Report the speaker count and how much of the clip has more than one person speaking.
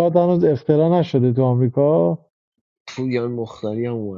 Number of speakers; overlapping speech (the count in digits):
2, no overlap